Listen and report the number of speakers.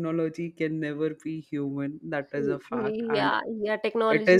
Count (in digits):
2